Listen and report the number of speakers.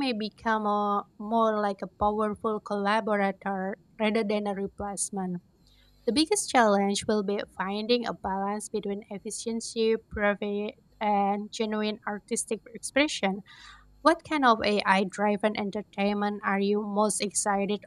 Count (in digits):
1